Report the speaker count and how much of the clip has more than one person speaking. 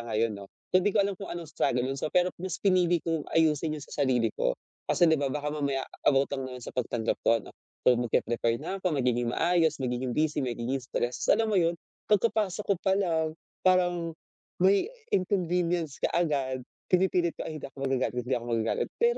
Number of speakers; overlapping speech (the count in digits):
1, no overlap